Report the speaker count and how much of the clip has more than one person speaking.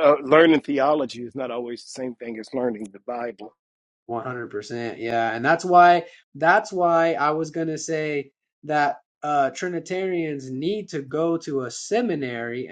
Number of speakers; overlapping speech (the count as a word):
two, no overlap